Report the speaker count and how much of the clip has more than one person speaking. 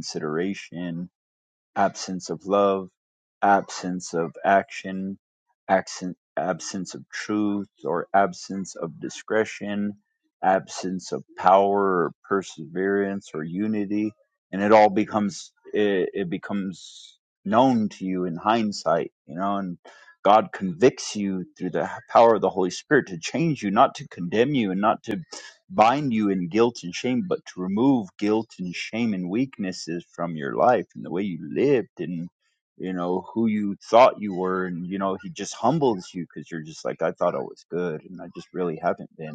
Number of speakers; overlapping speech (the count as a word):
one, no overlap